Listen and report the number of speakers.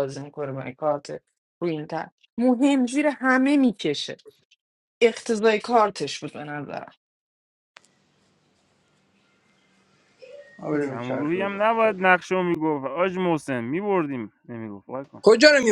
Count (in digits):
3